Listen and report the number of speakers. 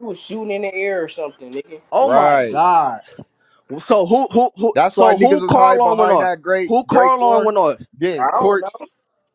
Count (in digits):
3